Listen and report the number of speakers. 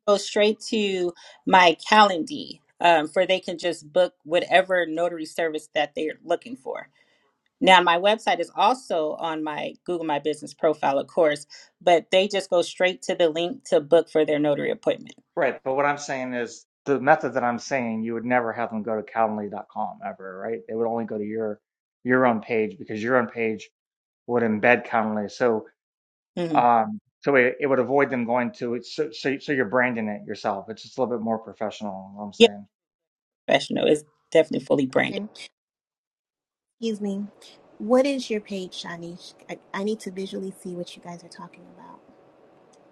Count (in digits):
3